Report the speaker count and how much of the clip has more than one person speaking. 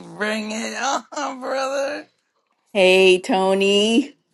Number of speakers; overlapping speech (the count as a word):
two, no overlap